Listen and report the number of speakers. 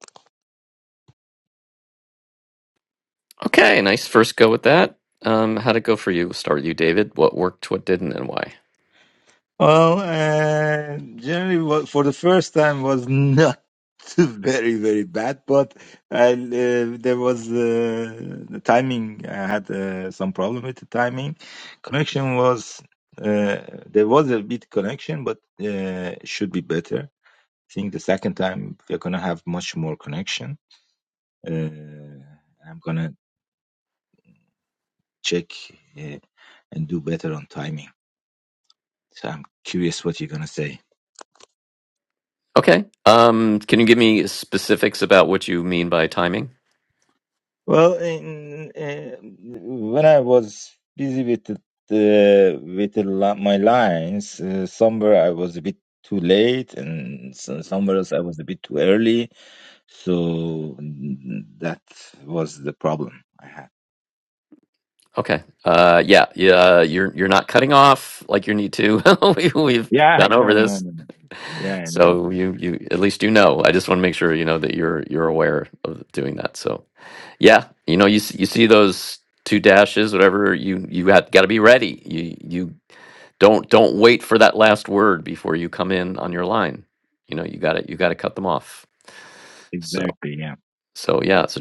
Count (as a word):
two